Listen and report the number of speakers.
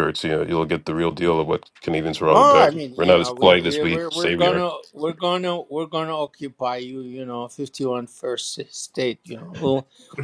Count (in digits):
2